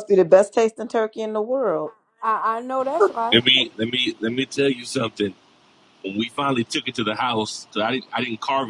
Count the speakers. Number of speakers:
3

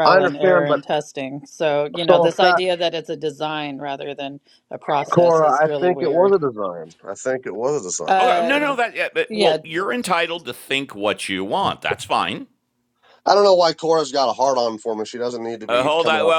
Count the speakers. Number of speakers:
3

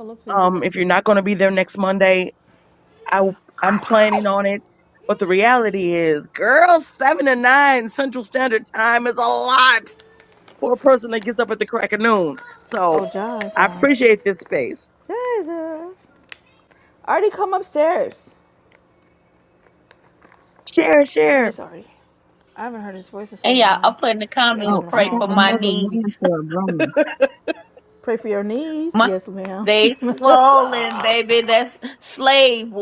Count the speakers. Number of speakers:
4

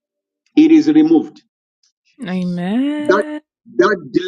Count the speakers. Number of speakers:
2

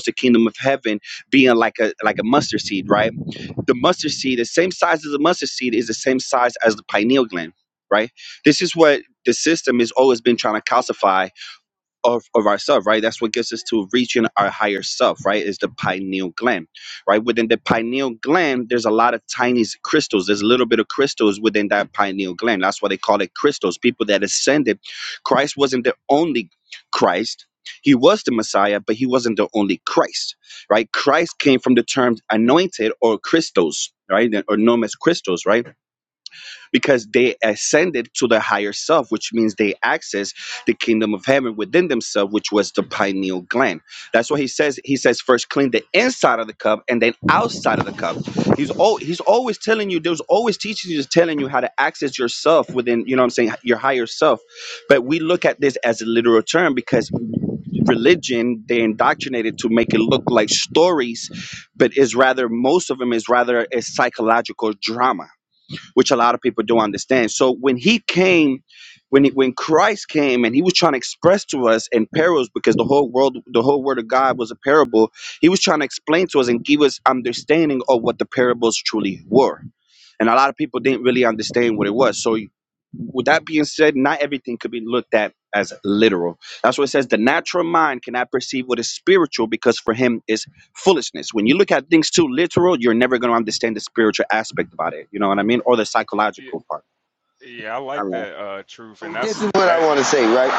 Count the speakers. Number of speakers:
3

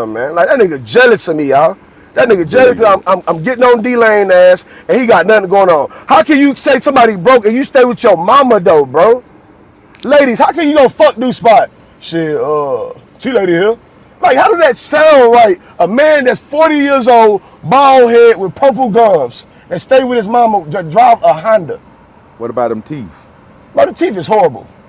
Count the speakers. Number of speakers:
2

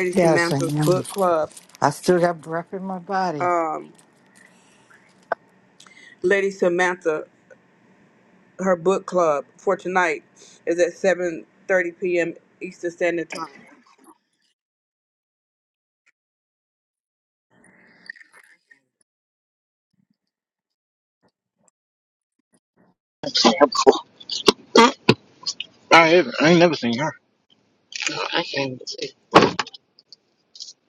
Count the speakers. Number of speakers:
3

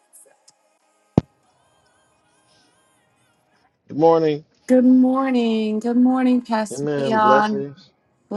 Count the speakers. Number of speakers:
2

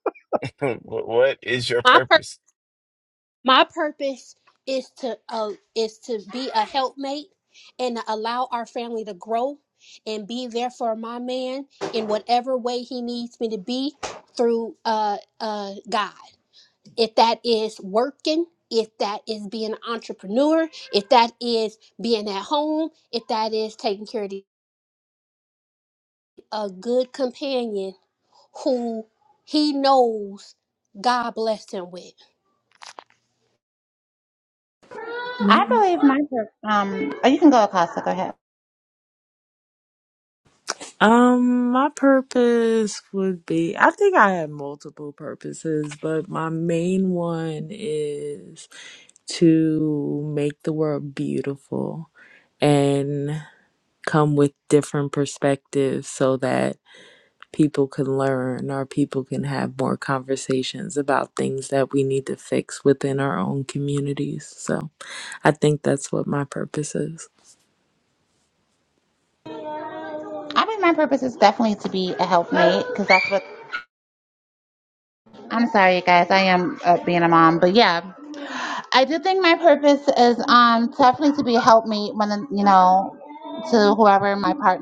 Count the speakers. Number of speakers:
4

